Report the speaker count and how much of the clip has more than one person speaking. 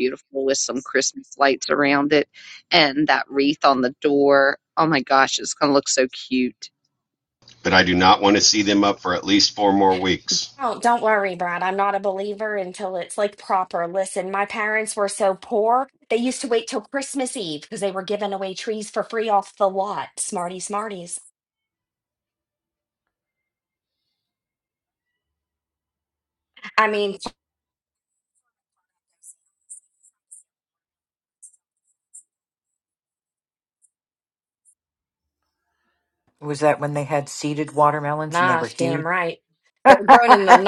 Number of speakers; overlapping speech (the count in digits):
4, about 4%